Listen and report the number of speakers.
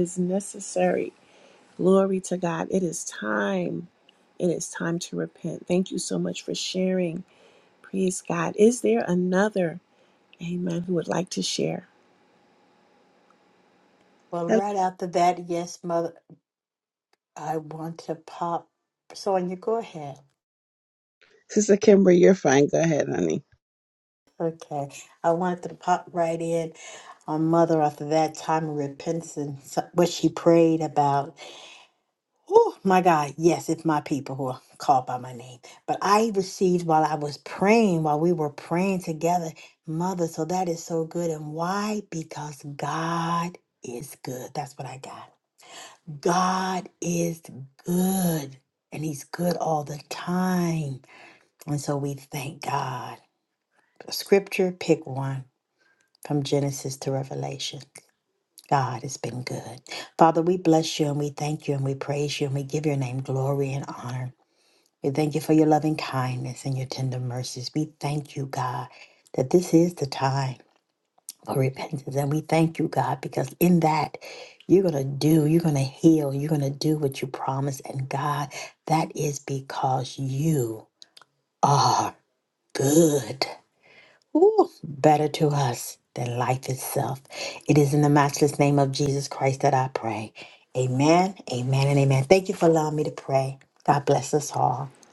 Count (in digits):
3